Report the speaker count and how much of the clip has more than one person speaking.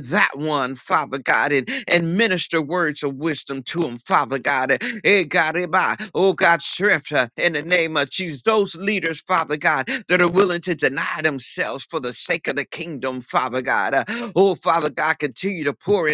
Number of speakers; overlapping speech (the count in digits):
1, no overlap